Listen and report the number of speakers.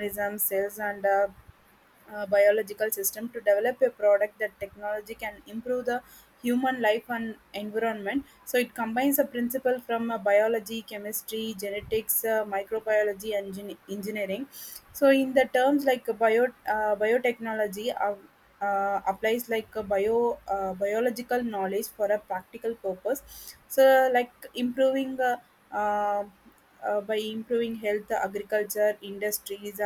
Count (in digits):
1